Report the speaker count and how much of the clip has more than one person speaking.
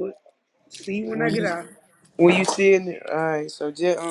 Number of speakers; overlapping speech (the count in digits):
2, about 11%